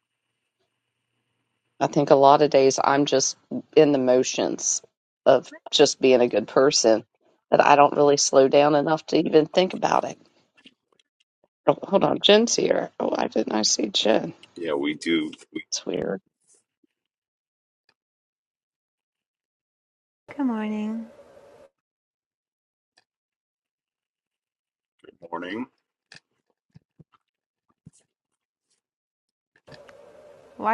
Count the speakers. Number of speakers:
three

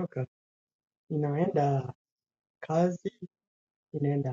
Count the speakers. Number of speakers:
one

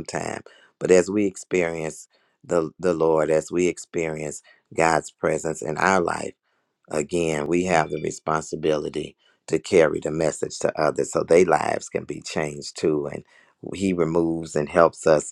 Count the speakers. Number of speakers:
one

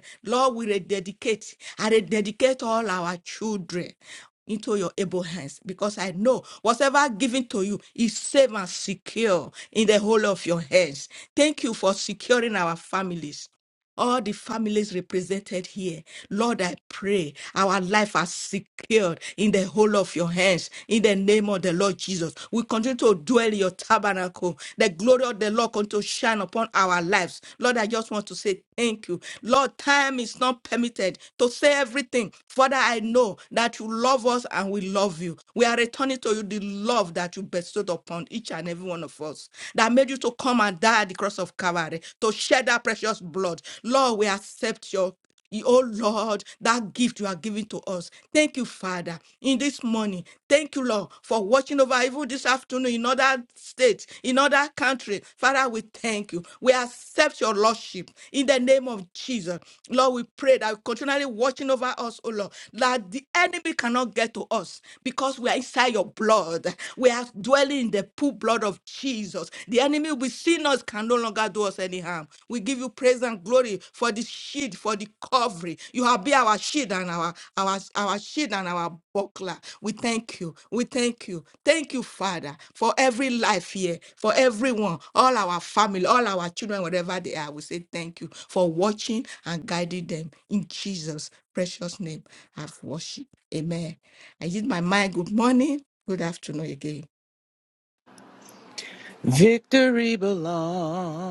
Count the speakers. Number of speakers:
two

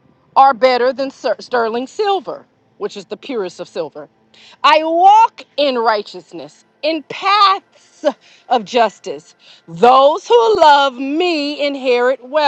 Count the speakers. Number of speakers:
one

